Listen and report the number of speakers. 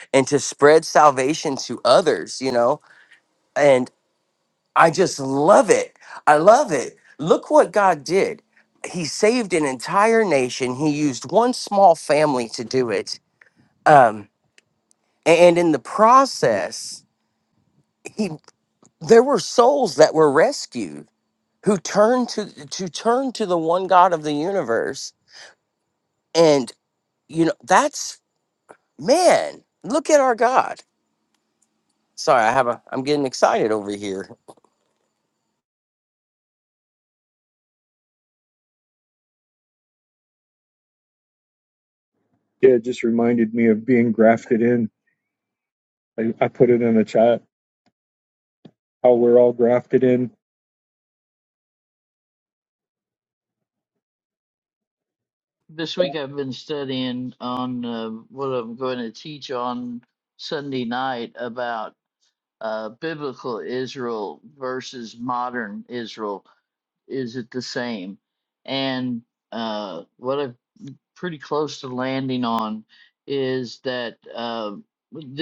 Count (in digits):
3